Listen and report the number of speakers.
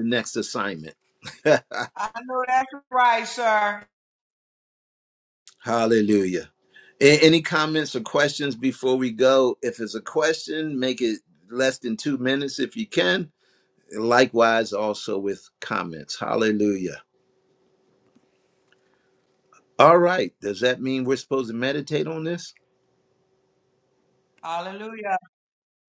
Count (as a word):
two